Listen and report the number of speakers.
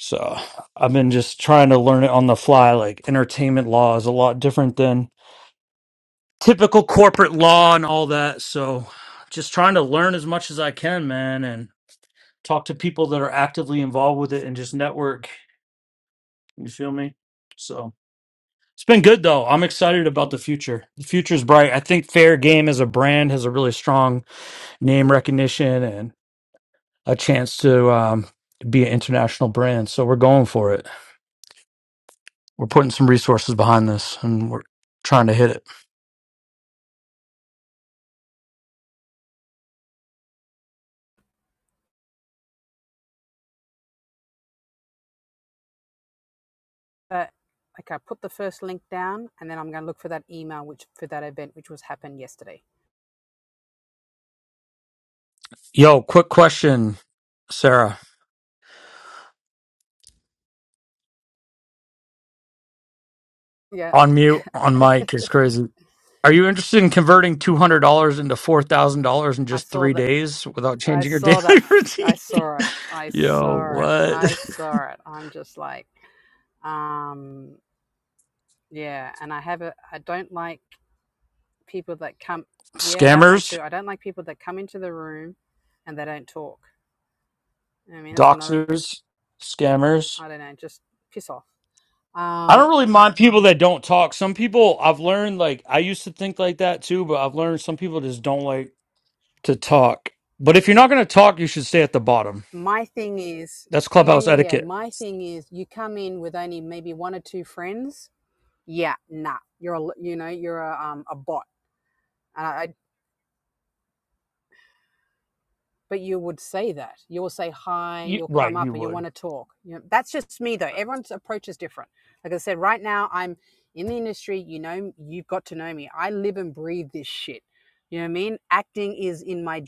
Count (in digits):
2